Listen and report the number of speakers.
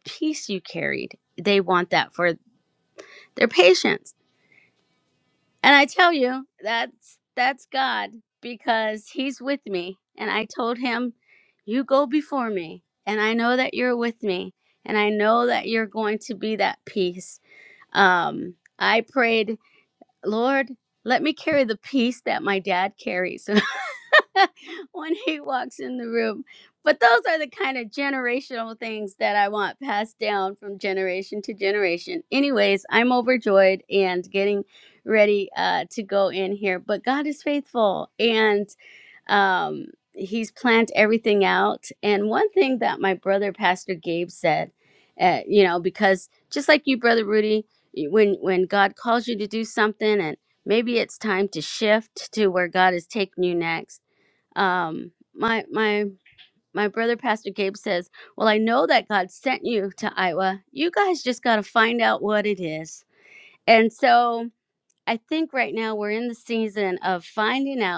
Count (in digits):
1